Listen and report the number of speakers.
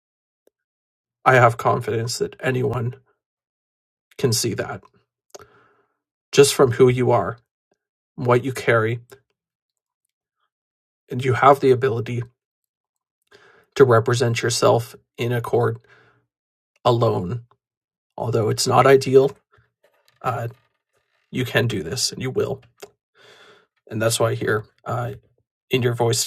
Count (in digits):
1